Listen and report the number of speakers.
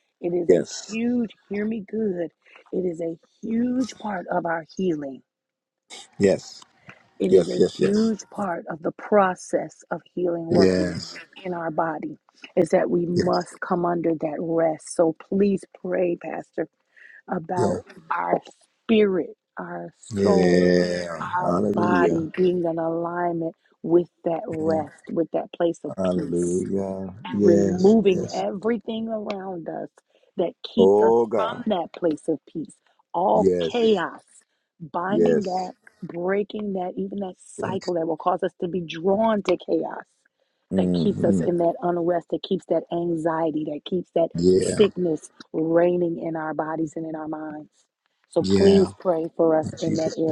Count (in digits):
2